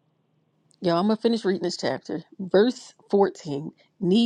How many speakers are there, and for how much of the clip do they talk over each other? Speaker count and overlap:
1, no overlap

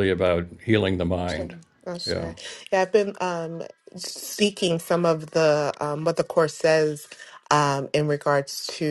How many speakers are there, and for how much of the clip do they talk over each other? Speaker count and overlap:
2, about 6%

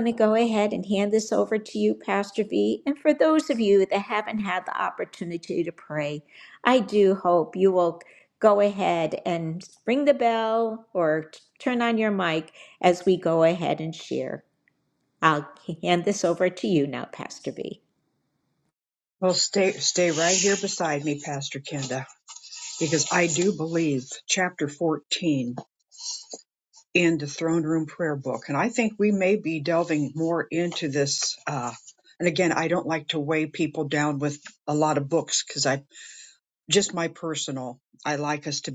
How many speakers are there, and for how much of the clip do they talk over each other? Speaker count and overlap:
2, no overlap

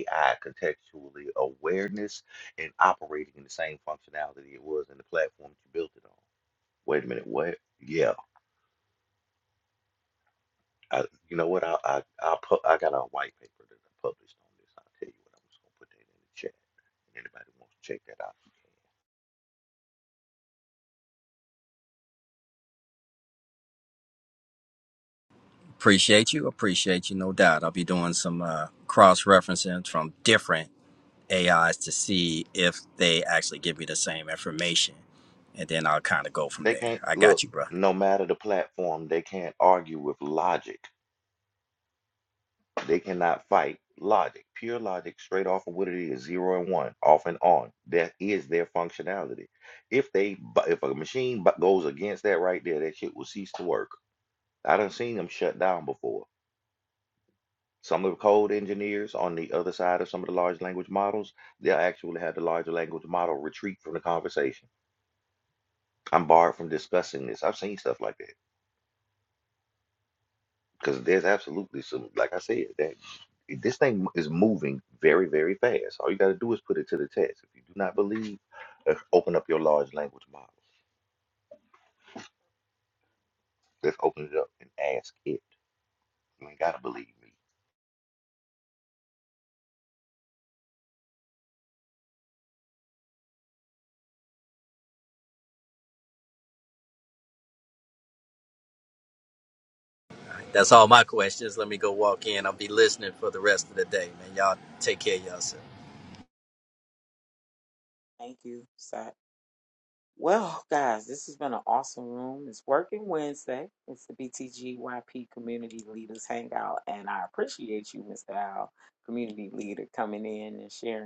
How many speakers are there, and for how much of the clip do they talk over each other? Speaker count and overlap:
3, about 1%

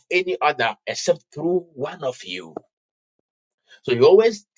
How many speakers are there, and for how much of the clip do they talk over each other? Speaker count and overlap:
1, no overlap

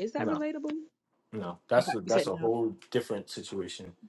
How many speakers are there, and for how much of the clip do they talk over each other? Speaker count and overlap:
2, about 22%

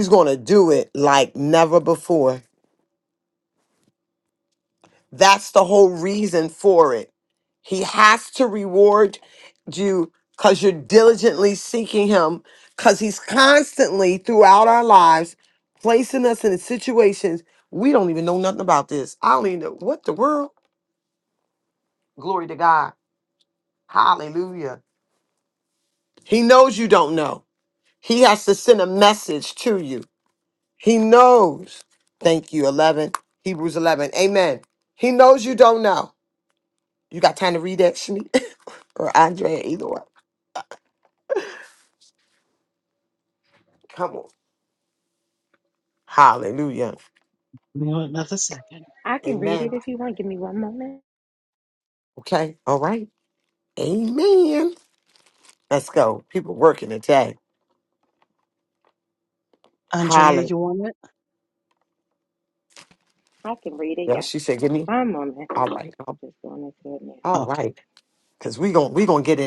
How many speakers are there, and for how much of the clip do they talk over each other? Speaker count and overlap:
3, about 2%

